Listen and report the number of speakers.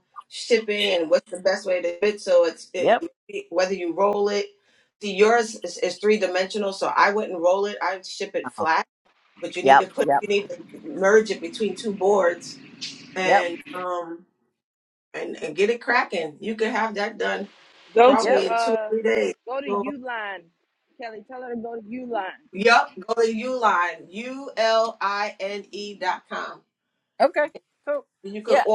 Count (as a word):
three